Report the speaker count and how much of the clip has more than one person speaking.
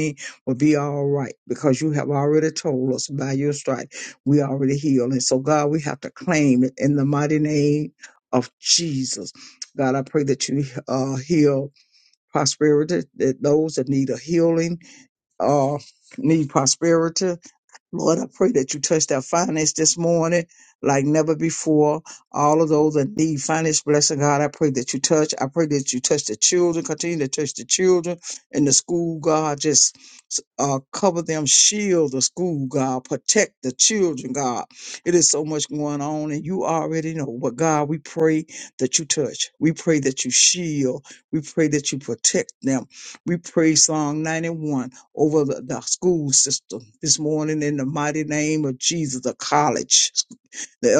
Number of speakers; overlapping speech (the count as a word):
one, no overlap